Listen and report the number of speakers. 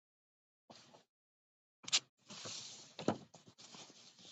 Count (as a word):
zero